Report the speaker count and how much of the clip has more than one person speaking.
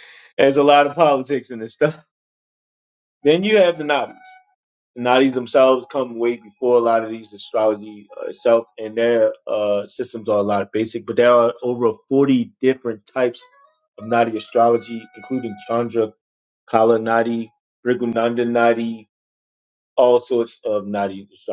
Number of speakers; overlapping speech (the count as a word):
one, no overlap